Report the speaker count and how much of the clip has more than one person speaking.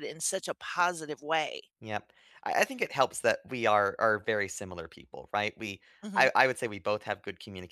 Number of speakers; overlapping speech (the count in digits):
2, about 2%